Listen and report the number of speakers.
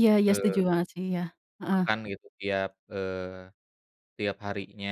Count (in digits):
2